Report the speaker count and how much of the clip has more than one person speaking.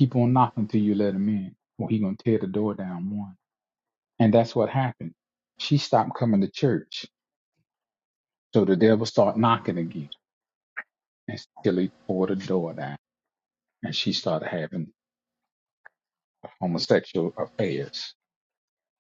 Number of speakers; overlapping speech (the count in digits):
1, no overlap